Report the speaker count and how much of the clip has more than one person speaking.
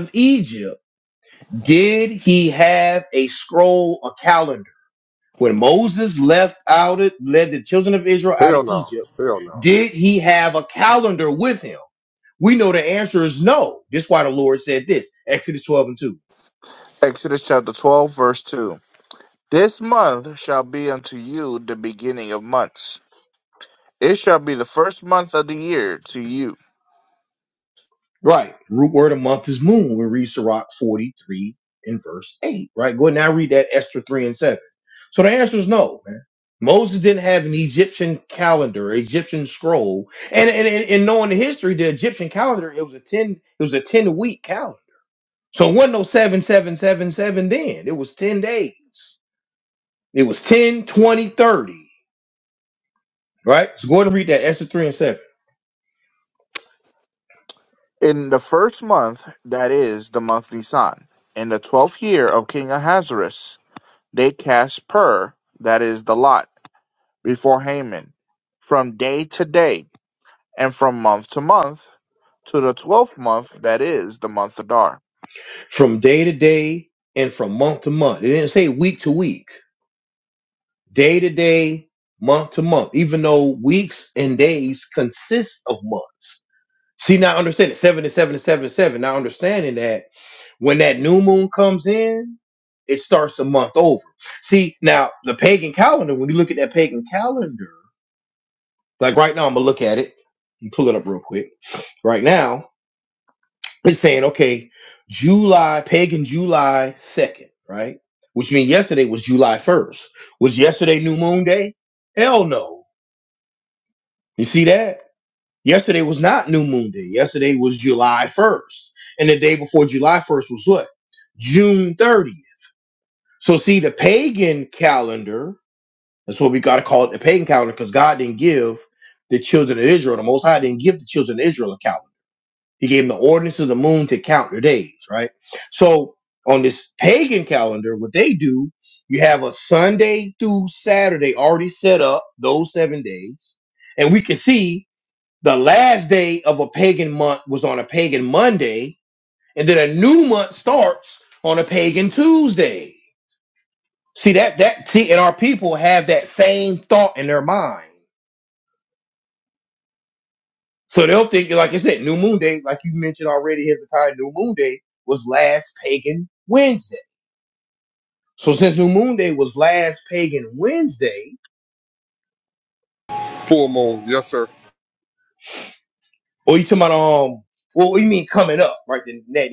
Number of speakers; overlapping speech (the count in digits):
3, under 1%